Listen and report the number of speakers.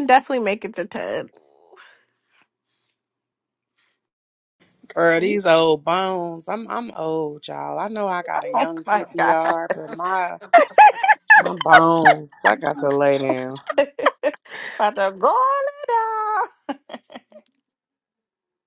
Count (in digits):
3